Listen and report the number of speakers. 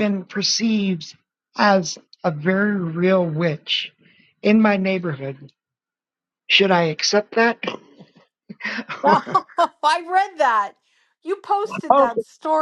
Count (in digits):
2